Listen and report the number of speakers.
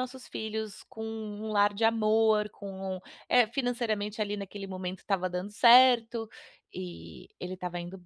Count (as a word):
one